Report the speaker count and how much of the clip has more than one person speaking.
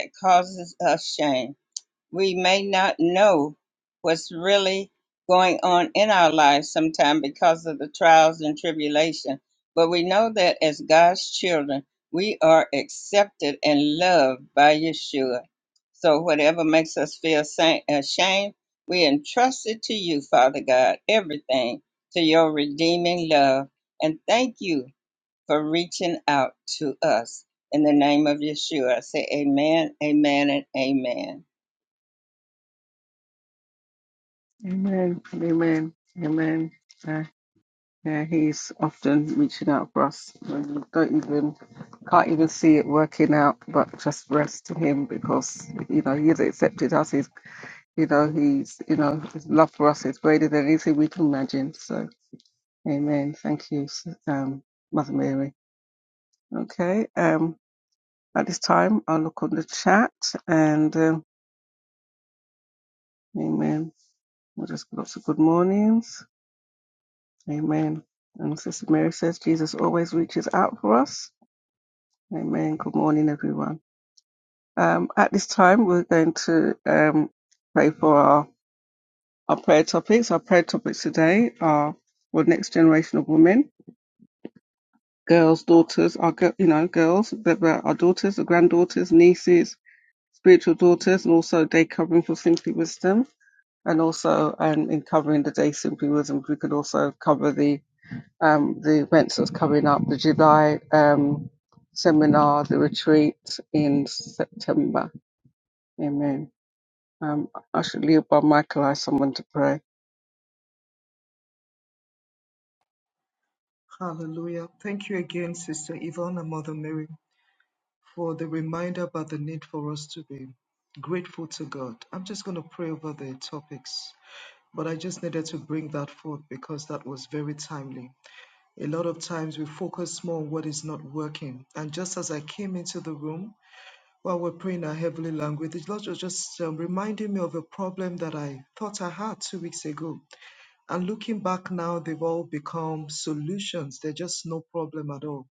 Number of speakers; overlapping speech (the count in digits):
3, no overlap